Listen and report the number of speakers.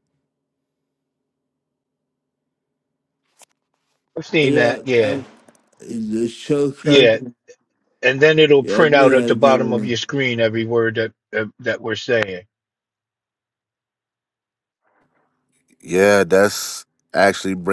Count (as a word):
three